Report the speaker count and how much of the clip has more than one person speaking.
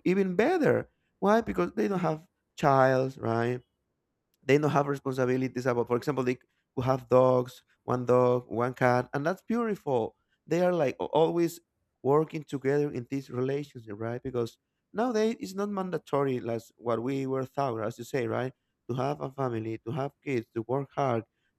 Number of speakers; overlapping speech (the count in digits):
1, no overlap